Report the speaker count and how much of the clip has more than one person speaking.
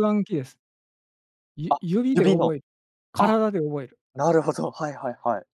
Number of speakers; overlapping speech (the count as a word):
two, about 11%